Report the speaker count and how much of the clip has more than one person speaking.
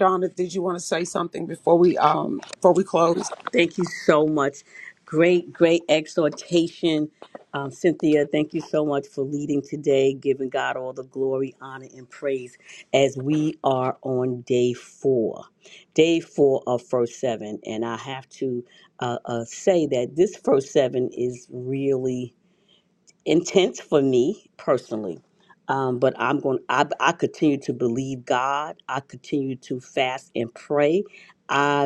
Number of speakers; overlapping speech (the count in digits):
2, no overlap